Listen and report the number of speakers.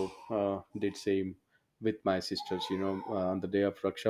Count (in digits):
1